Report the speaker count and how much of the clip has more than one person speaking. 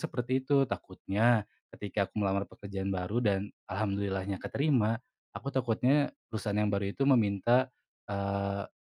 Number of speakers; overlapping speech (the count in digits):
1, no overlap